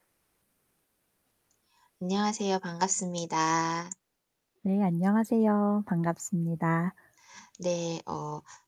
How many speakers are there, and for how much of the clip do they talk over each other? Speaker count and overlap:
2, no overlap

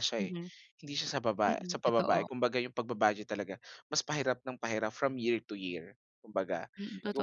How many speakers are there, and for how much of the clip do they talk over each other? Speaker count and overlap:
2, about 14%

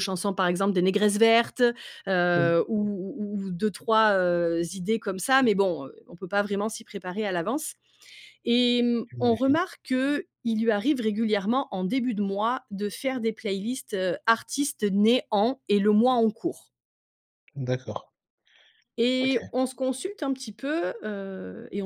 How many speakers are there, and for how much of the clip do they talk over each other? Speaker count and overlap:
2, about 4%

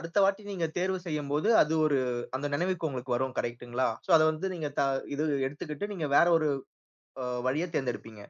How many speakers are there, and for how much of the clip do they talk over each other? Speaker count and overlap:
1, no overlap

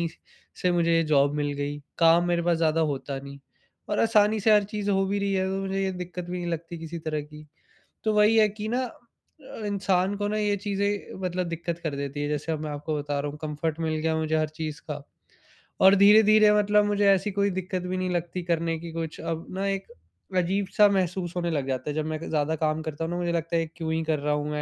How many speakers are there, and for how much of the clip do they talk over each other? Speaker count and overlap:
1, no overlap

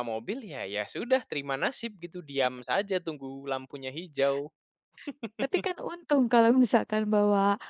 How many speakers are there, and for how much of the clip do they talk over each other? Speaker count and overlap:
2, no overlap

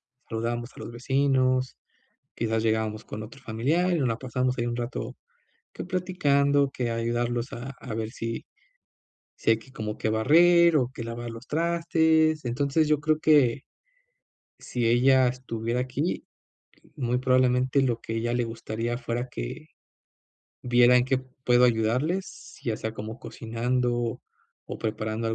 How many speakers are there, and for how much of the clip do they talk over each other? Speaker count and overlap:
1, no overlap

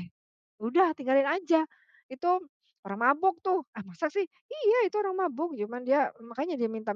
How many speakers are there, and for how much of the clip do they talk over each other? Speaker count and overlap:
1, no overlap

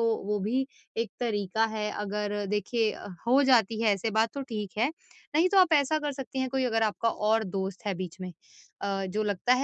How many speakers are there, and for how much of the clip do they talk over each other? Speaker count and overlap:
1, no overlap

